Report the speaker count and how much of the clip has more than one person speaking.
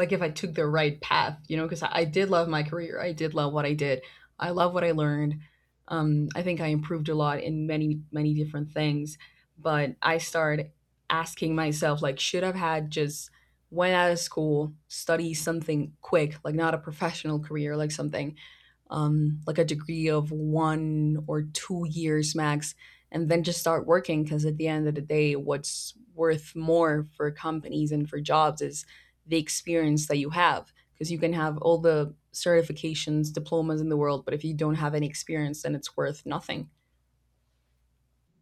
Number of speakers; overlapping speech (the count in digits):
1, no overlap